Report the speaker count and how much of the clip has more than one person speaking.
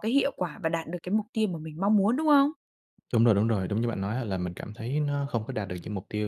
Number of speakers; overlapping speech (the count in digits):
2, no overlap